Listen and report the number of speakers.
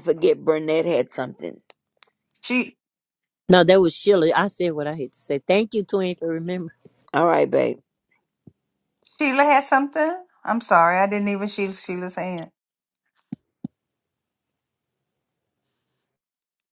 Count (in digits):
3